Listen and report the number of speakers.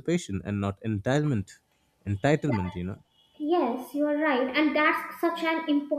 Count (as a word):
two